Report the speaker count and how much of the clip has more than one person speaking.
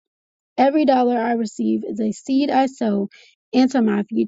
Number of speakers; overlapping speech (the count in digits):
1, no overlap